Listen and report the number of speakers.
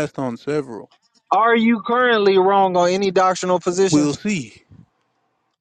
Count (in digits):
2